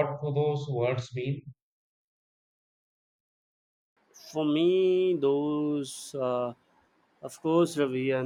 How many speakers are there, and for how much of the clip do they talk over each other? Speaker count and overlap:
two, no overlap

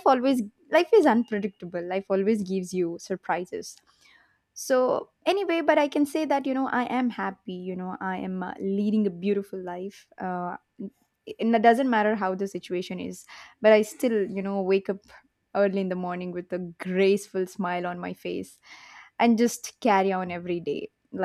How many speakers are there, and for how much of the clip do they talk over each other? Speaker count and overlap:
one, no overlap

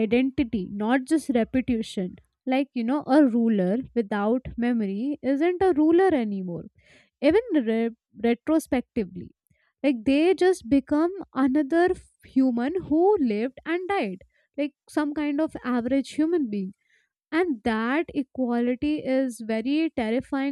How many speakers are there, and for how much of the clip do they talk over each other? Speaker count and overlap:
one, no overlap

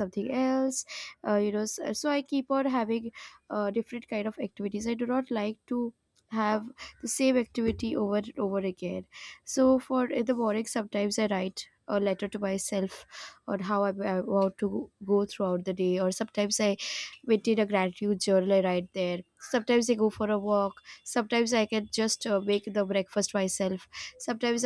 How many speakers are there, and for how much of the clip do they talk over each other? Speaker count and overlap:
one, no overlap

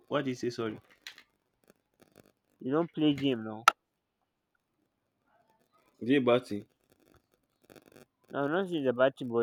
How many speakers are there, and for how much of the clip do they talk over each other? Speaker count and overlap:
two, no overlap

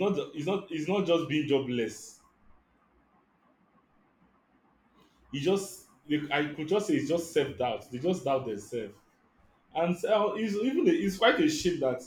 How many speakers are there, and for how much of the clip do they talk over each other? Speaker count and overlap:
one, no overlap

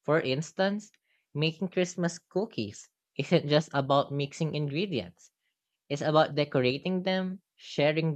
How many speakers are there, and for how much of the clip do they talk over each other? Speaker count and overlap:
one, no overlap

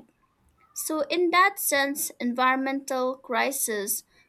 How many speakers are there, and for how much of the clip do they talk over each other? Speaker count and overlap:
one, no overlap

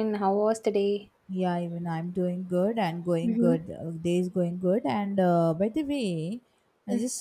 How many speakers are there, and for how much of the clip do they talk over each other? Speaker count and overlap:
two, about 5%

